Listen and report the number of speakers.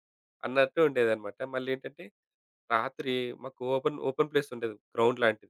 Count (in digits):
1